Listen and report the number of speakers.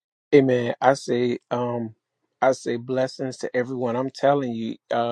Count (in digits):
1